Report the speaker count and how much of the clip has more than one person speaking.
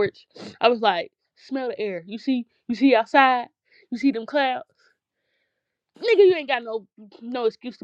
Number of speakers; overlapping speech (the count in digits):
1, no overlap